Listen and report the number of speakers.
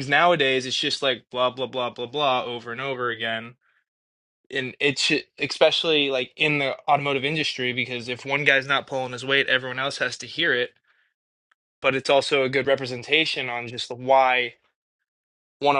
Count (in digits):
1